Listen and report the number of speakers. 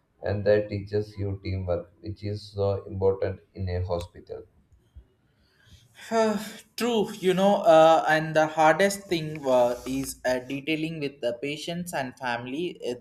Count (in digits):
2